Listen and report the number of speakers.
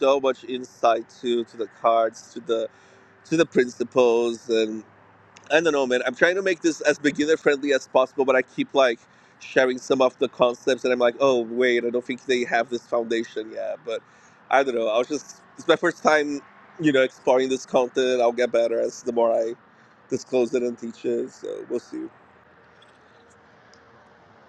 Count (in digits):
1